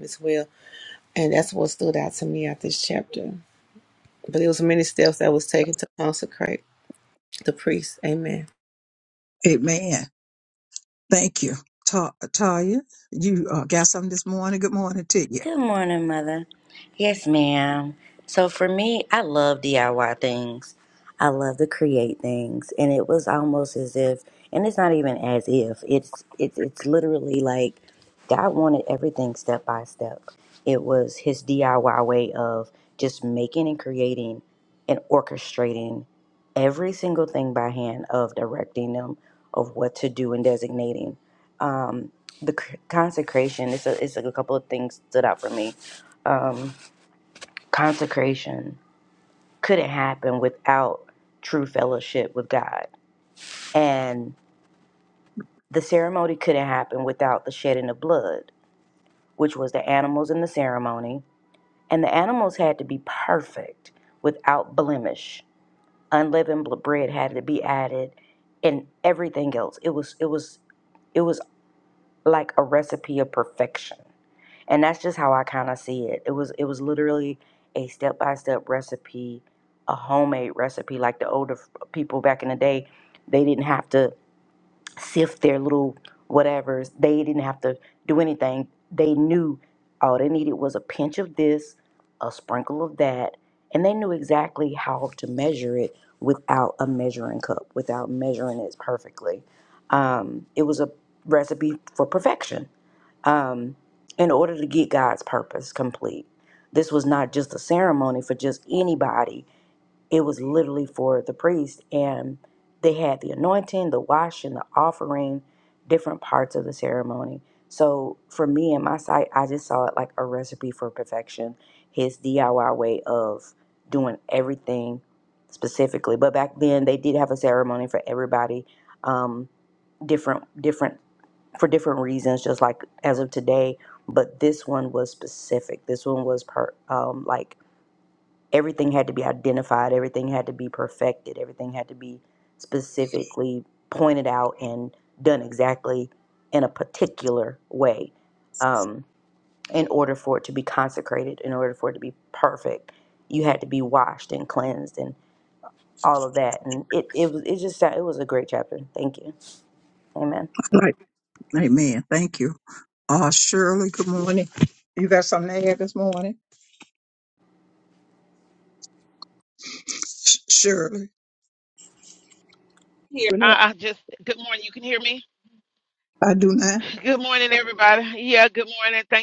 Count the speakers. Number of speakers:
4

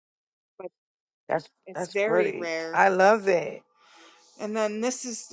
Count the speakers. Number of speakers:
2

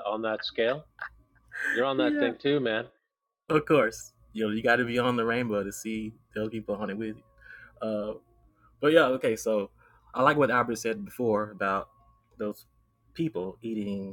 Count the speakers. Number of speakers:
2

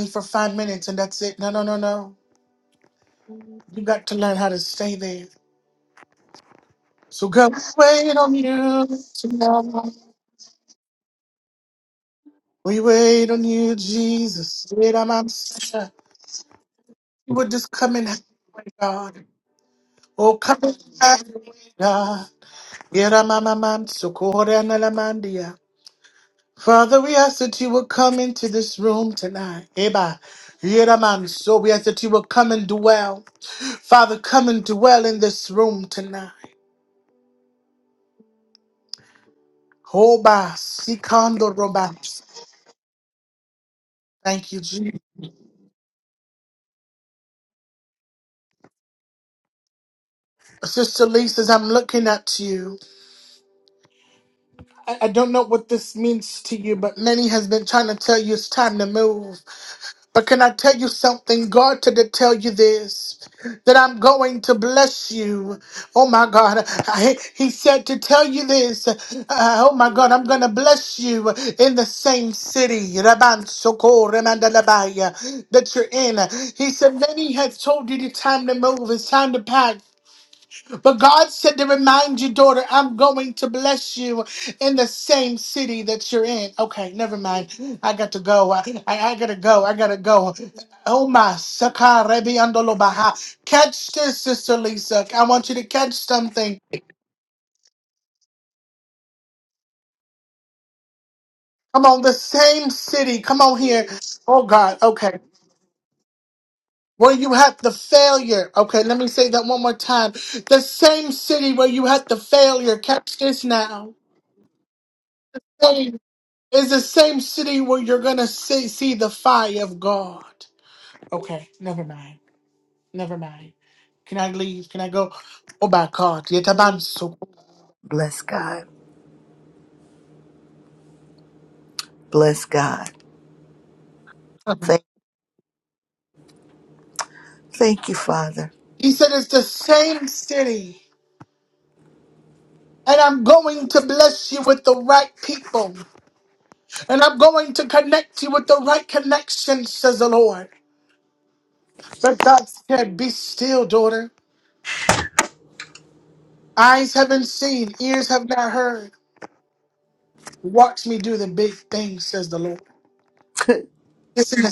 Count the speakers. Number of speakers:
2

